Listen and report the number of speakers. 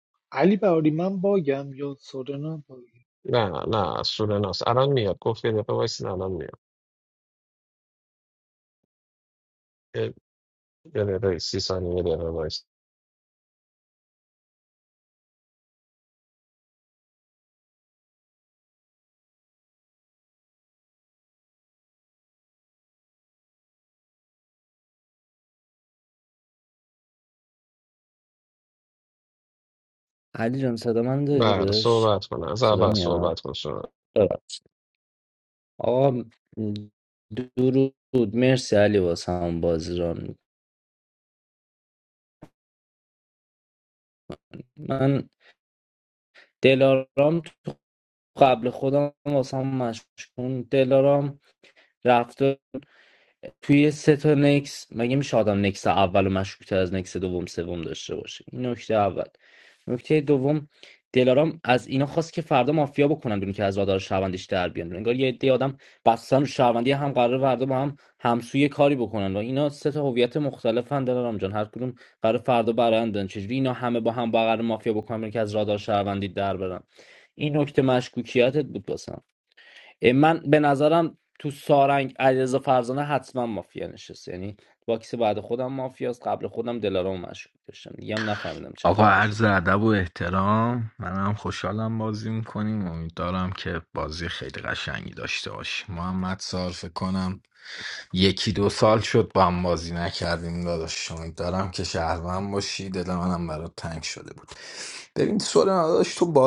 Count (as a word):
four